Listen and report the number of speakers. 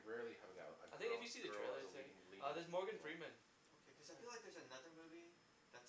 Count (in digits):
3